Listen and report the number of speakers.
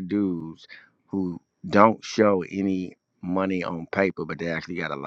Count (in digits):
1